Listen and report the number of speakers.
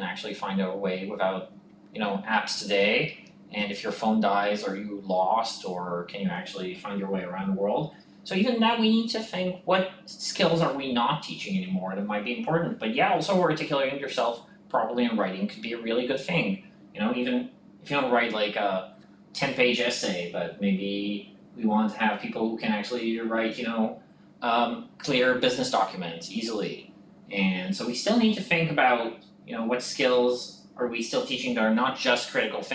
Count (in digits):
1